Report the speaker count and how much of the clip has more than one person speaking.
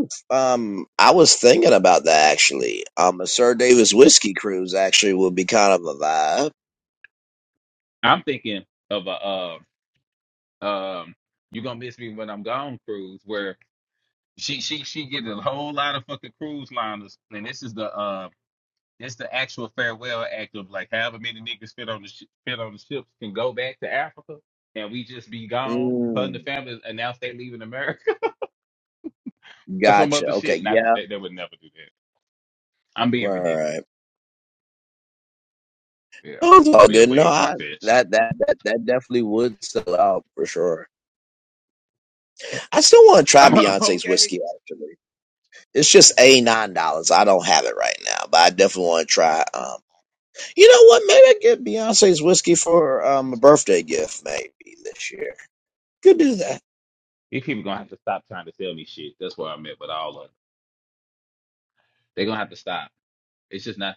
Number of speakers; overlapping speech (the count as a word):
two, about 7%